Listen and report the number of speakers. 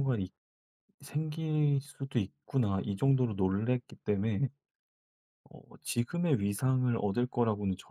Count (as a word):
one